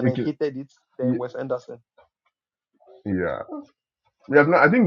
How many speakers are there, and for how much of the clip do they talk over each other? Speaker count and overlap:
2, about 10%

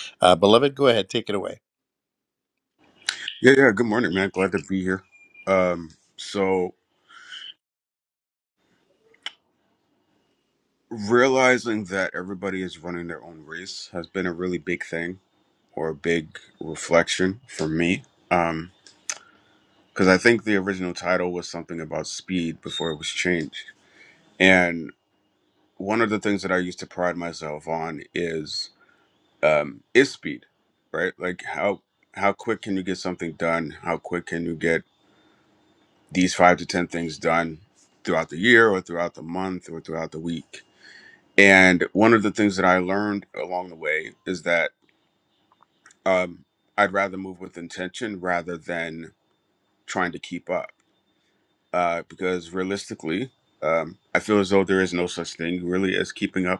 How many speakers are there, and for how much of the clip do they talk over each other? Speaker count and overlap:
2, no overlap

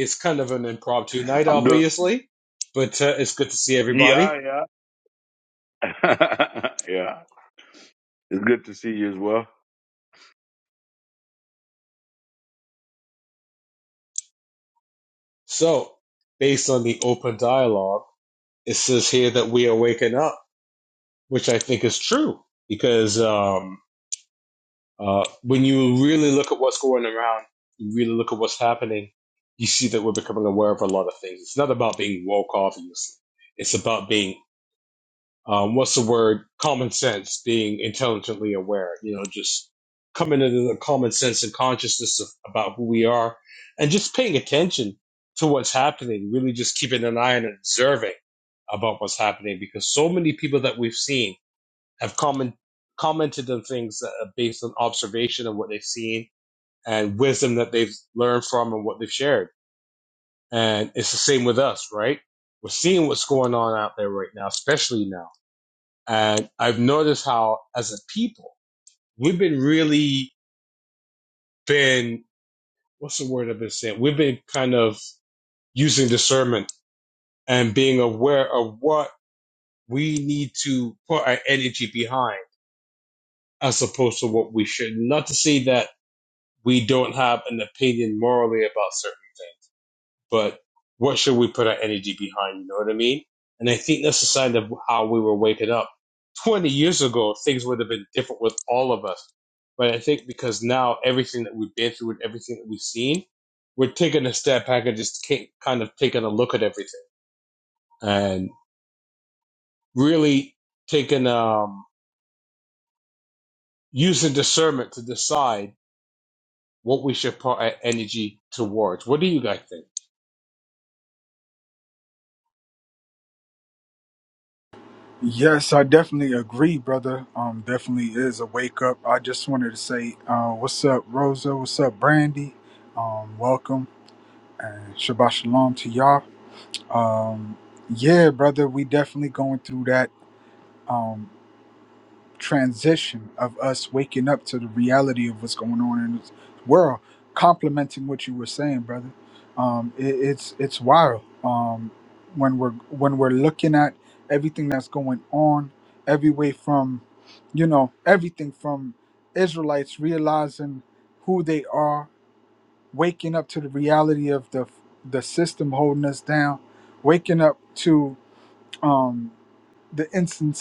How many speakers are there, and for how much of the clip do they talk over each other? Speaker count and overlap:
3, under 1%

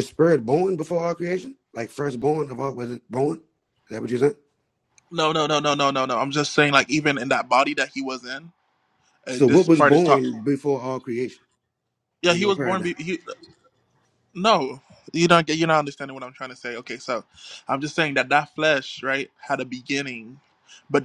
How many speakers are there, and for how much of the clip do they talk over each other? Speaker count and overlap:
2, about 7%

